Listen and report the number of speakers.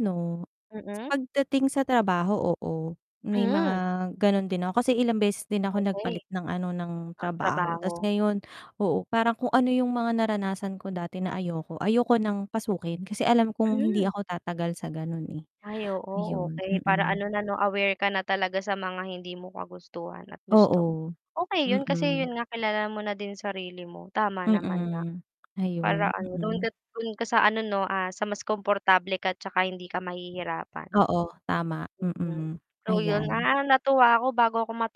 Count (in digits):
2